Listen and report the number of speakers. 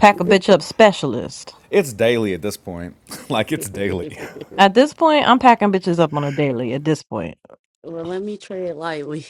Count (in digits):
3